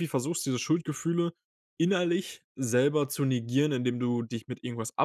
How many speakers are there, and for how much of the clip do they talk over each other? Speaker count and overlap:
1, no overlap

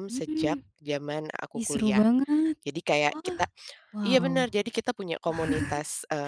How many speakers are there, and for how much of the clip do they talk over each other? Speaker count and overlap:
2, about 28%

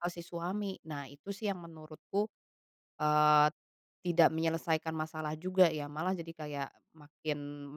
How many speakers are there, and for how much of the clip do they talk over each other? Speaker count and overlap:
1, no overlap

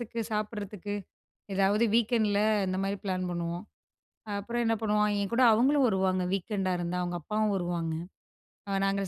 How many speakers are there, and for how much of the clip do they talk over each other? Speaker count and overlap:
1, no overlap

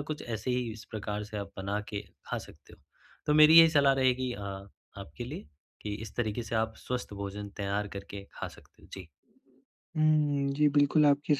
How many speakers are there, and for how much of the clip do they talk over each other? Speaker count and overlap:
2, no overlap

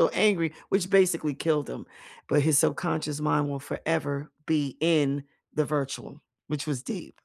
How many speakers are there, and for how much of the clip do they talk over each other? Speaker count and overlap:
1, no overlap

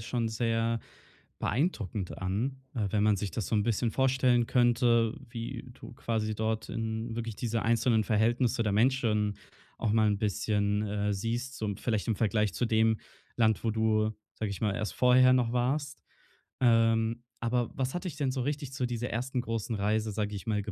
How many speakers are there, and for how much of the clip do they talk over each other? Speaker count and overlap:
1, no overlap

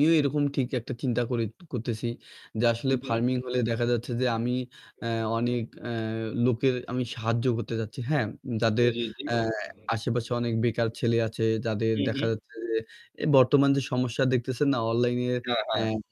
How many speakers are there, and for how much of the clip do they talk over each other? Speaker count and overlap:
2, about 5%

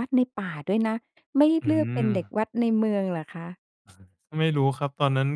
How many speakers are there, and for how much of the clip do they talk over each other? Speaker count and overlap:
2, about 11%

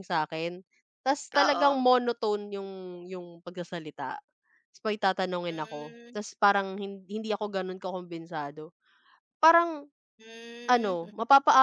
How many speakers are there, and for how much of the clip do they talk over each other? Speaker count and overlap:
2, about 12%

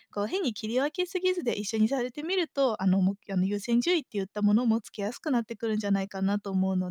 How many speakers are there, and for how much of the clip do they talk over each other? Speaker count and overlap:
1, no overlap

